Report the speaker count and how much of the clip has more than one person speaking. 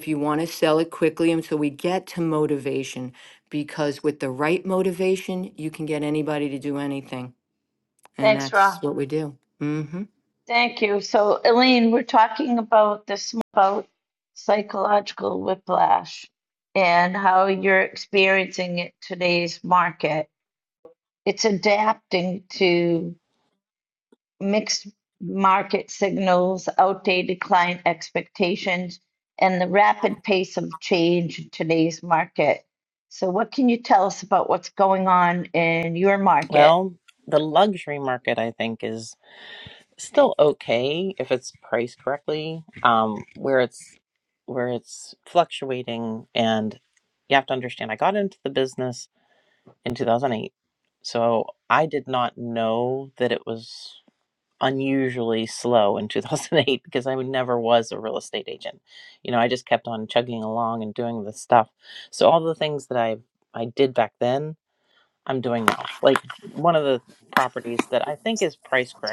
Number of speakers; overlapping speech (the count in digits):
3, about 1%